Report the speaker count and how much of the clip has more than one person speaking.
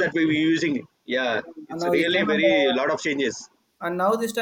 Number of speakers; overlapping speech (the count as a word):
two, about 33%